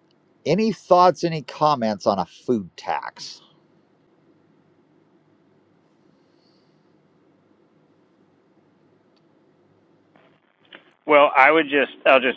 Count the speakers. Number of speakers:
two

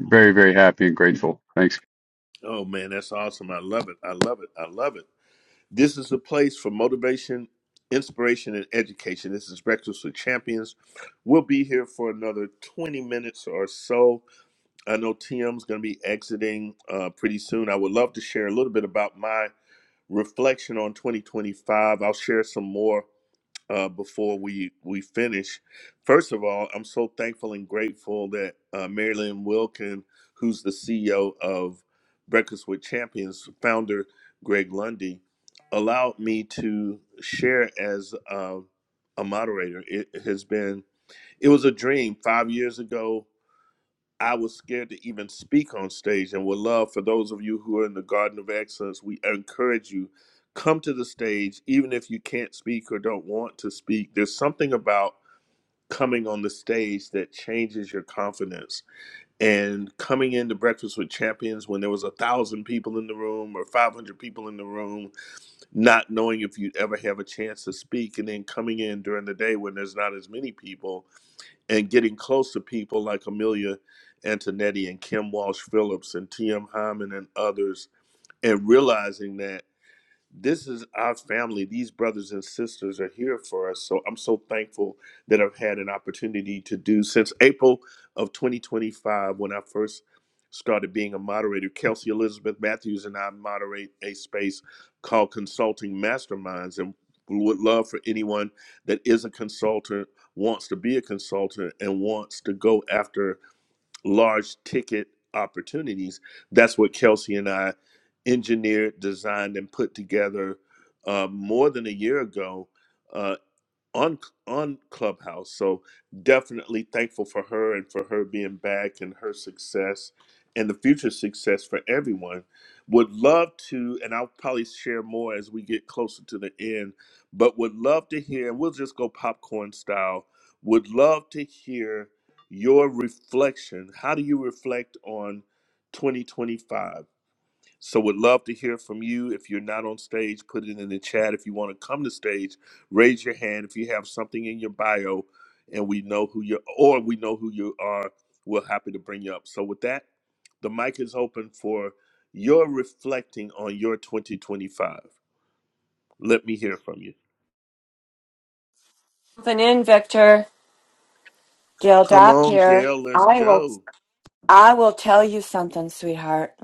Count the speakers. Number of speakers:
three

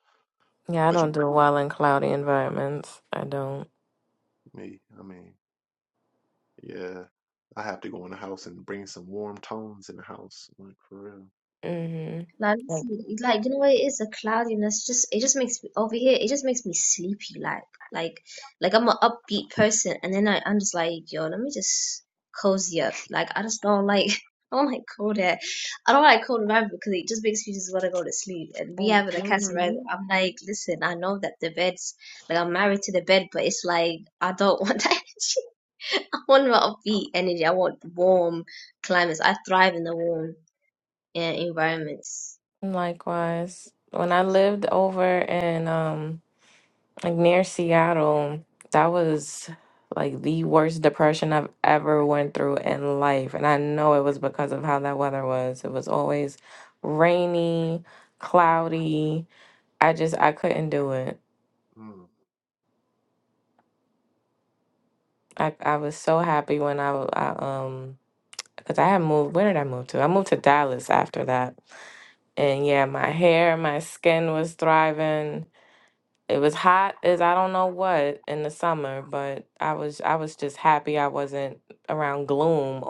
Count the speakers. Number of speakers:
three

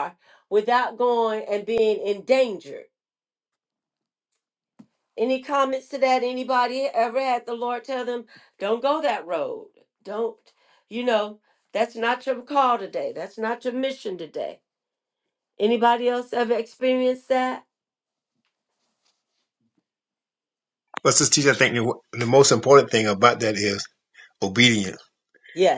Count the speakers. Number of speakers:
two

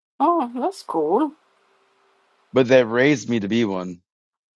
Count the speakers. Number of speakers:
two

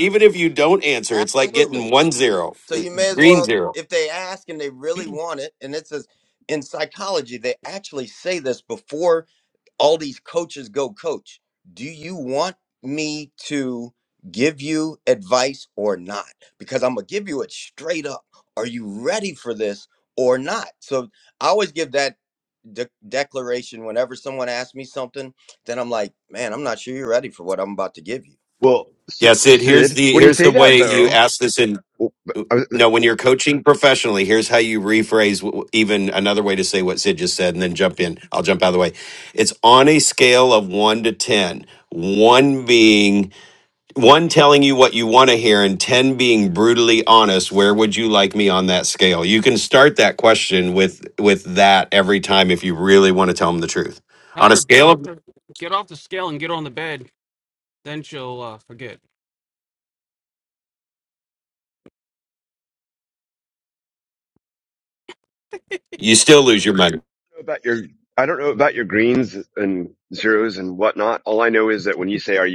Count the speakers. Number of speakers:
four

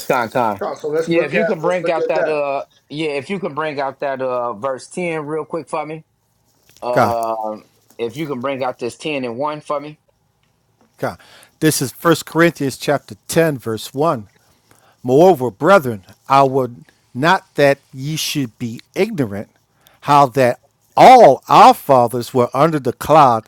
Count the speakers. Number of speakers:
three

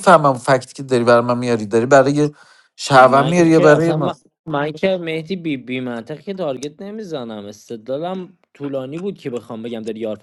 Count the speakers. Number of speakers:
two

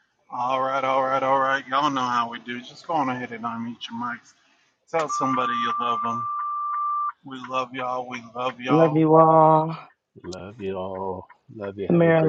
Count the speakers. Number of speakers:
three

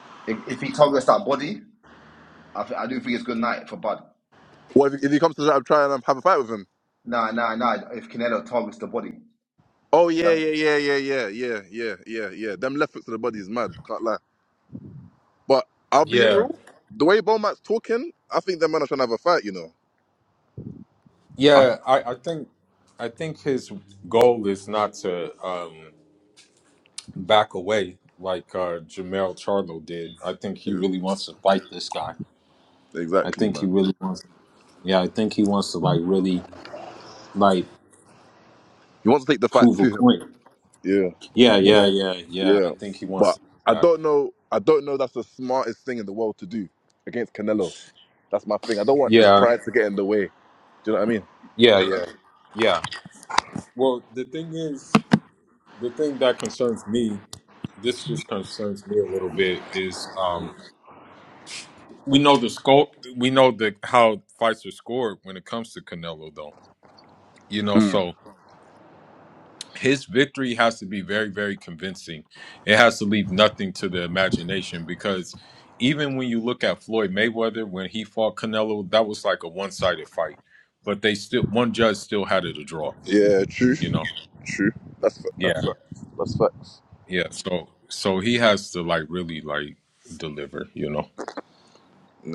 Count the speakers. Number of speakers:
three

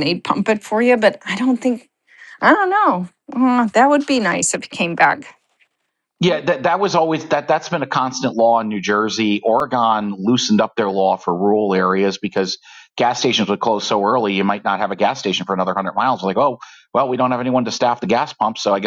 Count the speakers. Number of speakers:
two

